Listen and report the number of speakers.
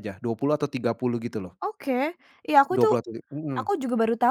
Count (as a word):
two